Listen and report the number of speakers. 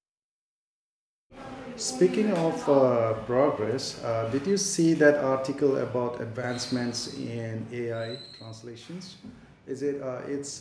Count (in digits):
1